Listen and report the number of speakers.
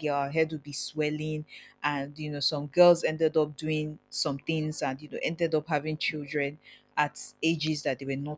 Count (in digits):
1